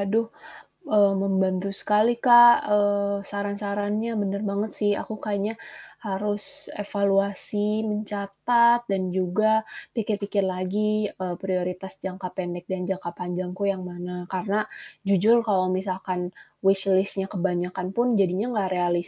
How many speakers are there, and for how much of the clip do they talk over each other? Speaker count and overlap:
one, no overlap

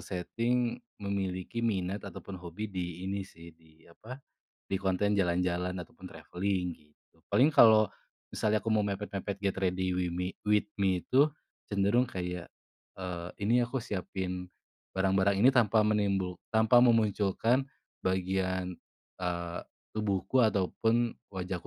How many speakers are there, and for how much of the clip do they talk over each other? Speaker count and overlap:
one, no overlap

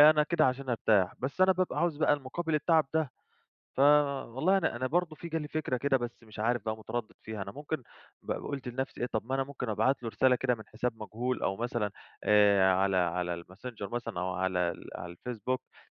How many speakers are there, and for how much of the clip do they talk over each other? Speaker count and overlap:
one, no overlap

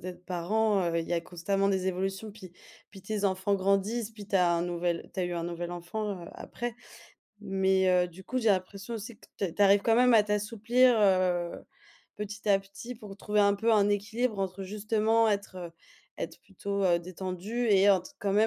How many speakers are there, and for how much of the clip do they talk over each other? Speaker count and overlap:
one, no overlap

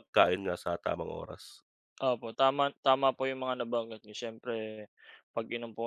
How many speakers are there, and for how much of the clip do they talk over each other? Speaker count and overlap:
two, no overlap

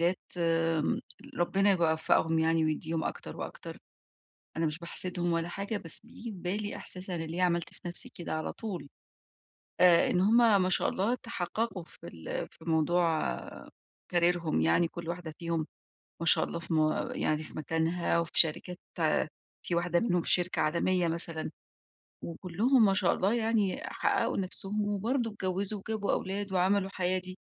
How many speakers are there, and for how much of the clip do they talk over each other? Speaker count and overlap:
one, no overlap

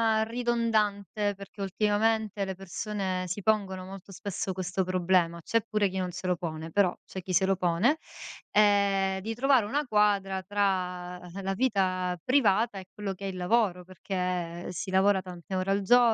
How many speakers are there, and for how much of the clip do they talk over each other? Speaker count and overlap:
one, no overlap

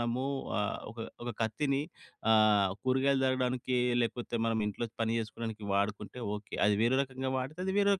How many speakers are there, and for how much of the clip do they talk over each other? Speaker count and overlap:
one, no overlap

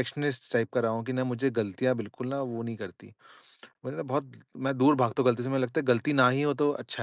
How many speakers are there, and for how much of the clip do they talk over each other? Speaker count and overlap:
one, no overlap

